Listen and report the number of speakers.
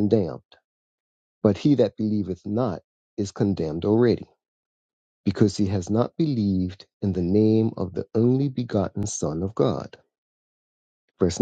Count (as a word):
one